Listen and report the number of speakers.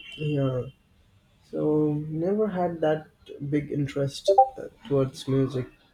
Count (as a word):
one